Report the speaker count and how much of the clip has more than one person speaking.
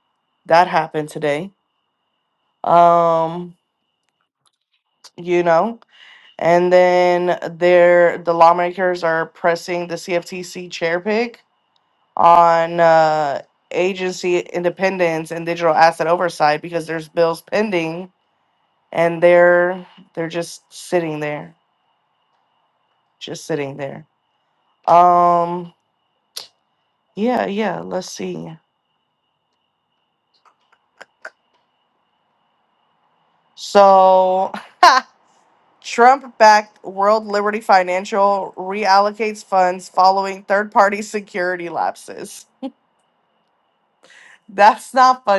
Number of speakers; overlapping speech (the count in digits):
1, no overlap